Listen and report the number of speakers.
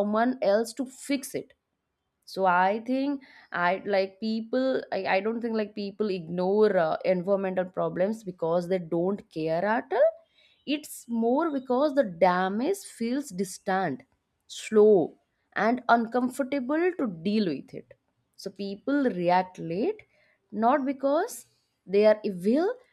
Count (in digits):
1